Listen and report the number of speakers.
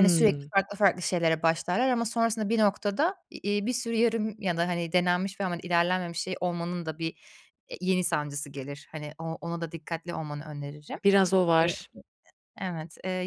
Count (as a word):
two